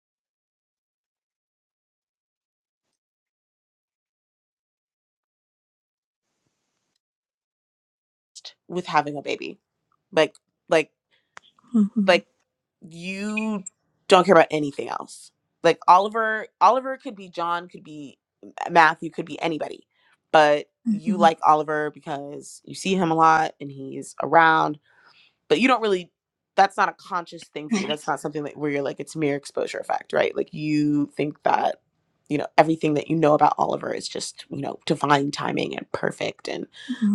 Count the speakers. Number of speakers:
2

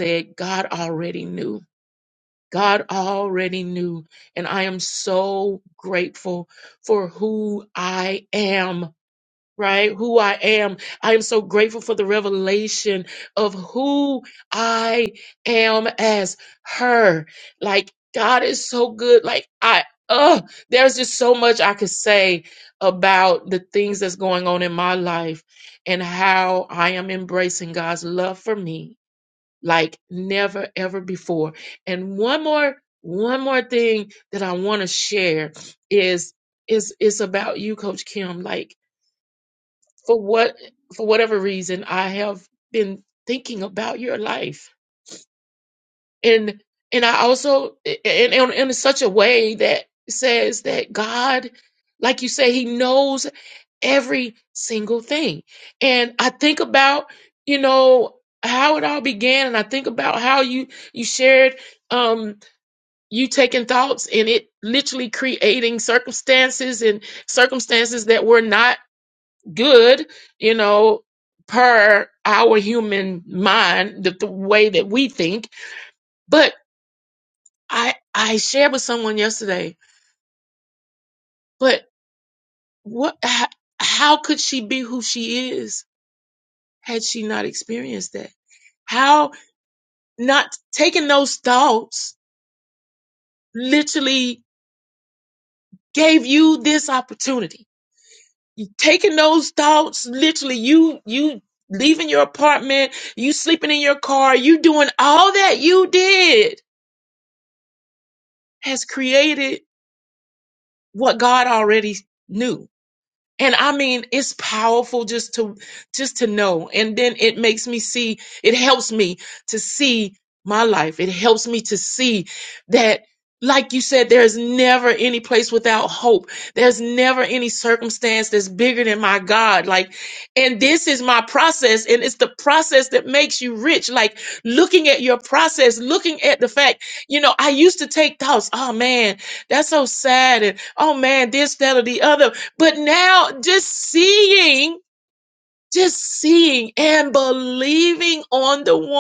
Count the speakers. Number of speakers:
1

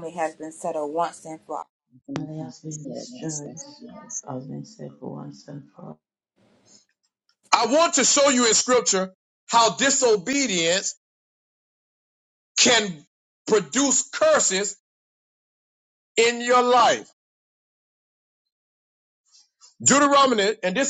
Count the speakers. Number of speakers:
3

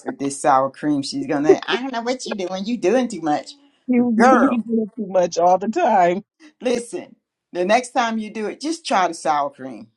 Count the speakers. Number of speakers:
2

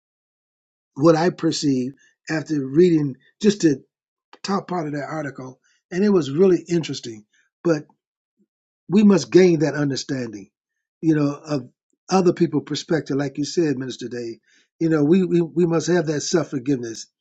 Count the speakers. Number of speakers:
1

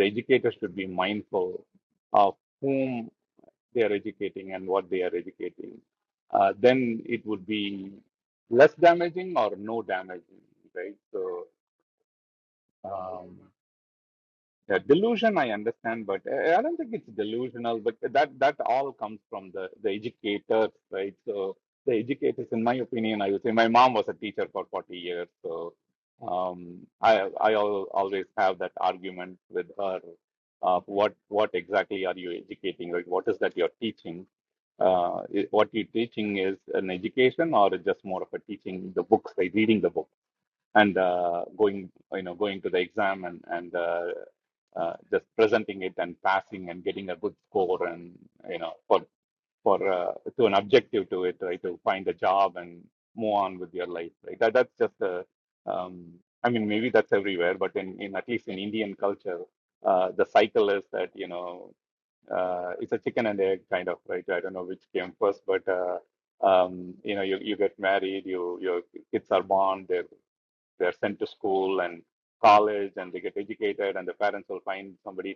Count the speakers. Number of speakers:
1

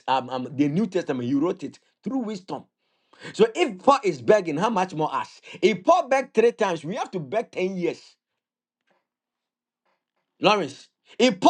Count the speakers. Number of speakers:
1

